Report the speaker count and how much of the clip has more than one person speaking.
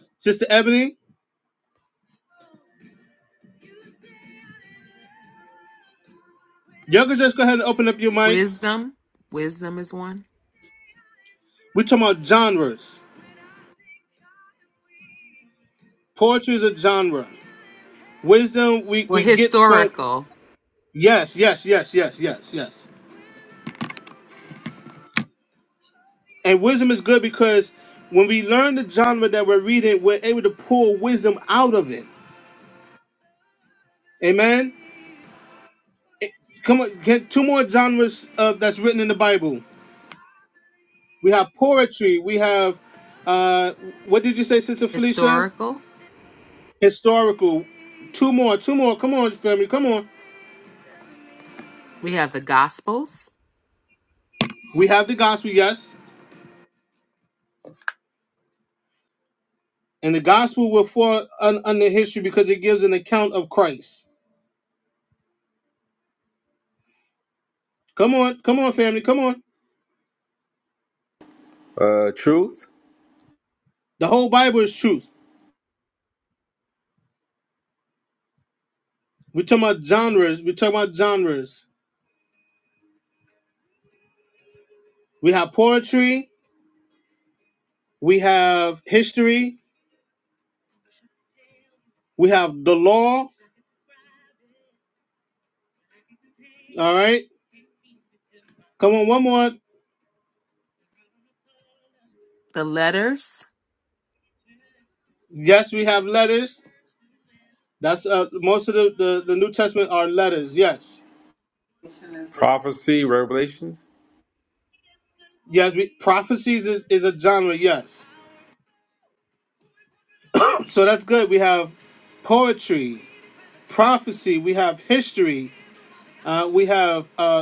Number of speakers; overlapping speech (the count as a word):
three, about 1%